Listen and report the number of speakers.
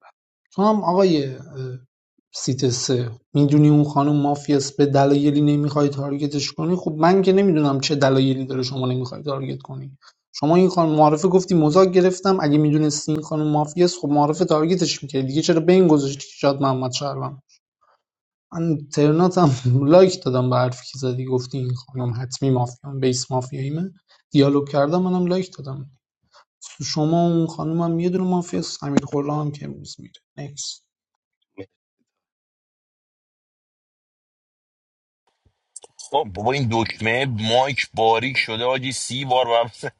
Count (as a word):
two